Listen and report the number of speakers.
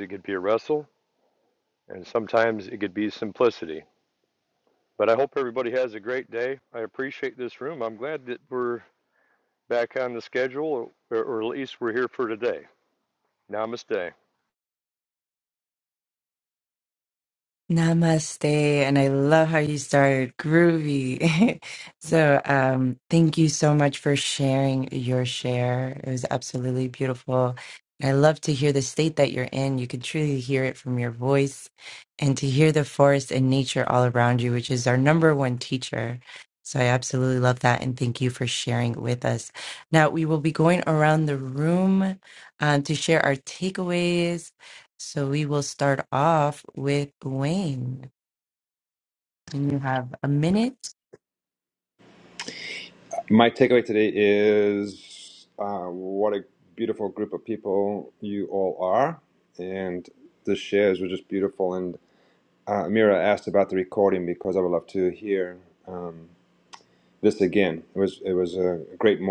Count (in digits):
3